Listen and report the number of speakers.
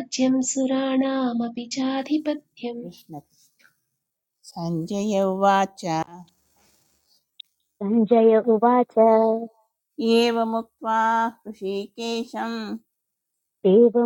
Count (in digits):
3